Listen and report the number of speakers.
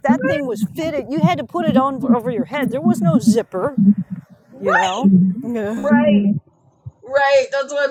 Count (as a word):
two